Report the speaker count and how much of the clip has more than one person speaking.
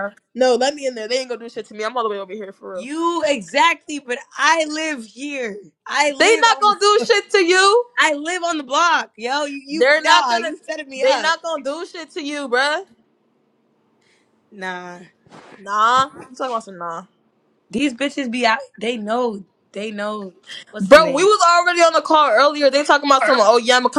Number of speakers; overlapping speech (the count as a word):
two, about 8%